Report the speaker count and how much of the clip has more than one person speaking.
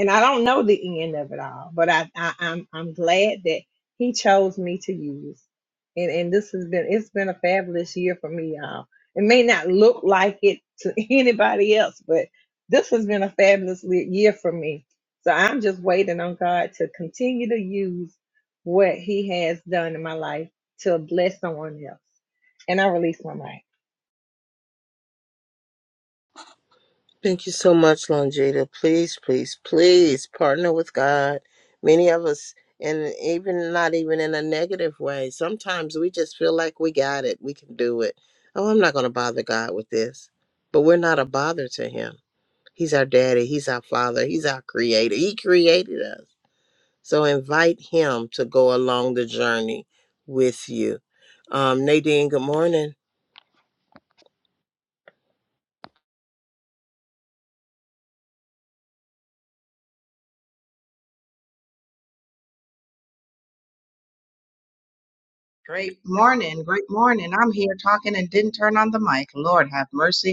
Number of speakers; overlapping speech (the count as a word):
three, no overlap